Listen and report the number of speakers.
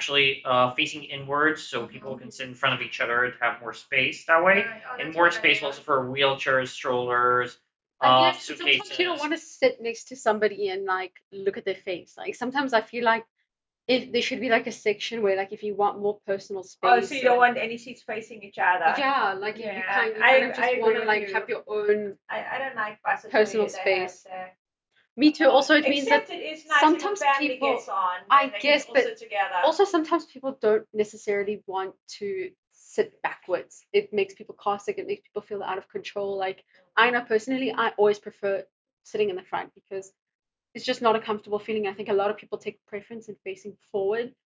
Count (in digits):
3